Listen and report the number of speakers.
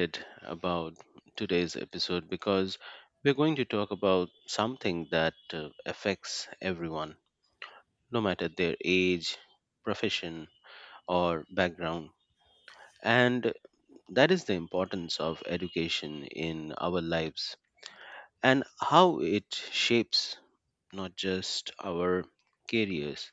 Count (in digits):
1